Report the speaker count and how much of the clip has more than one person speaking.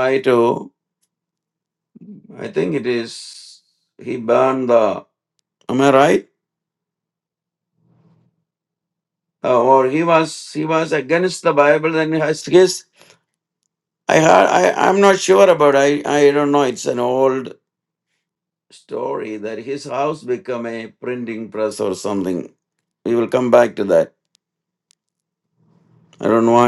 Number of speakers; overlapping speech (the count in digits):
1, no overlap